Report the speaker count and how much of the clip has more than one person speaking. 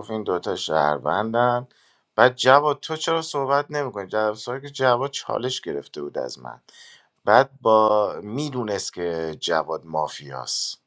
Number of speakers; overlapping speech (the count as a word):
one, no overlap